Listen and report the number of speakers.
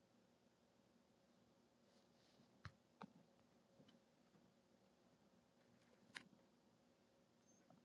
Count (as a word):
zero